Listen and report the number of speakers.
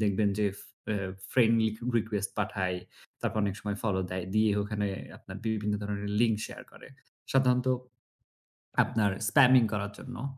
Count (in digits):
1